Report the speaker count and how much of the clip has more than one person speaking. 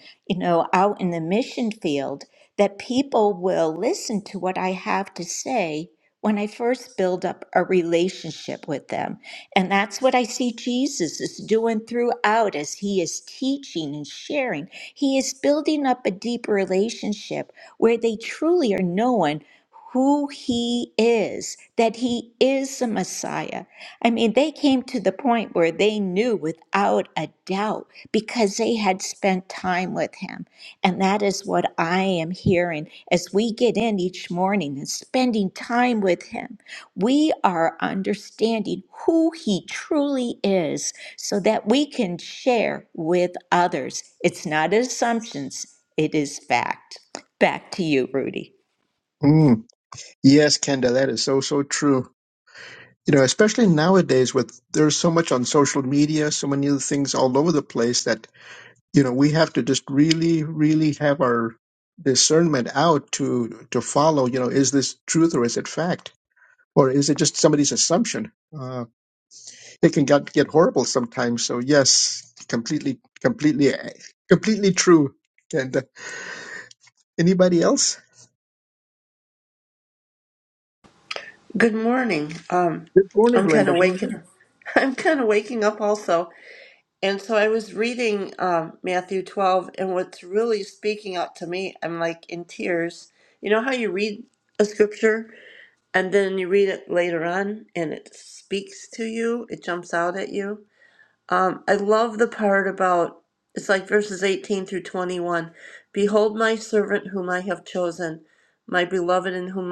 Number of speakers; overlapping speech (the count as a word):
three, about 1%